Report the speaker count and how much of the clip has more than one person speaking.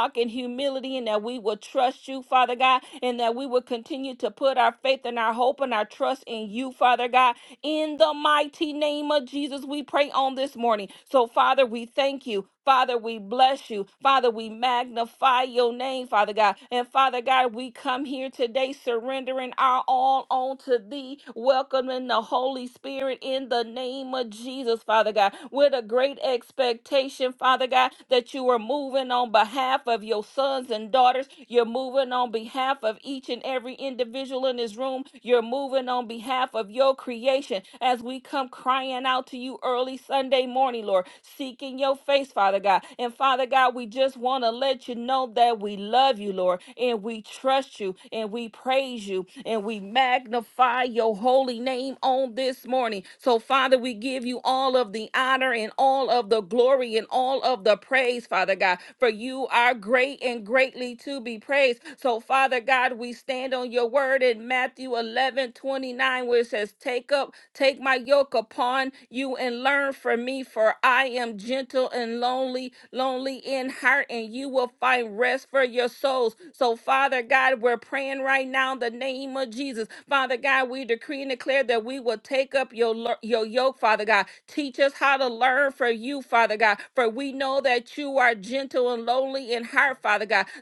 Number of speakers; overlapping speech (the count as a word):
one, no overlap